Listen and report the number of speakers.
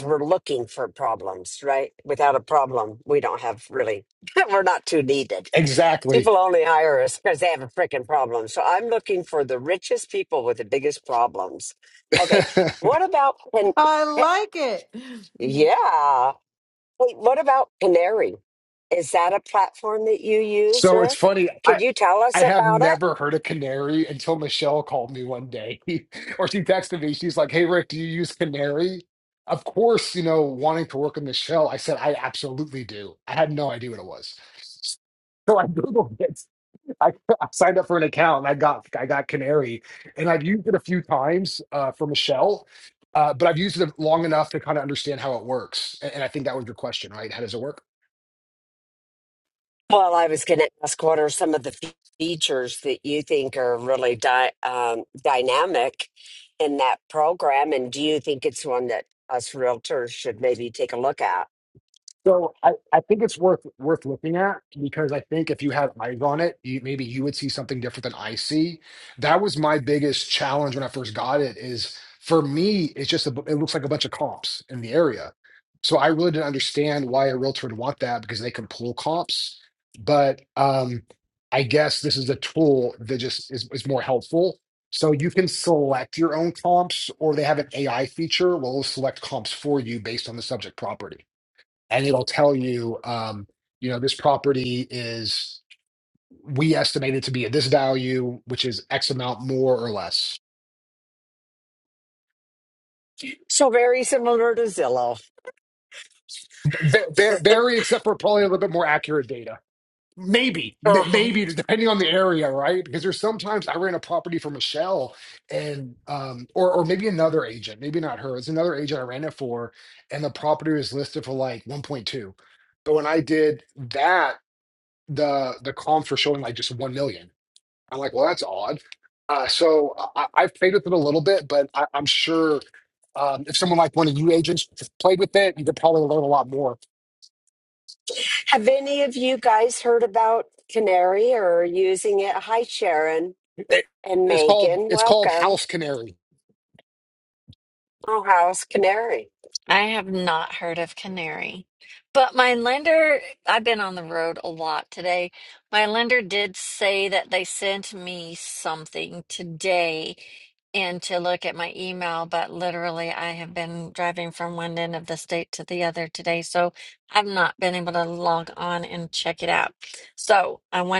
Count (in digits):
4